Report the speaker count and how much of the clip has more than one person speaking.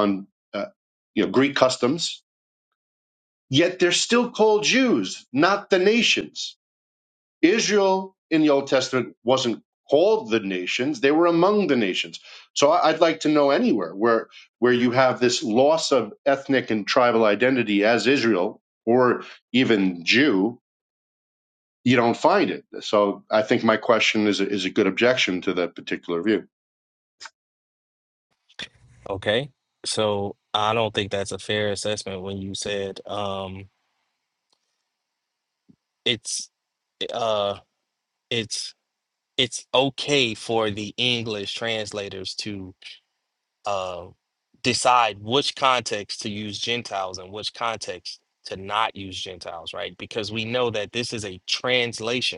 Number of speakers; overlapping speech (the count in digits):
2, no overlap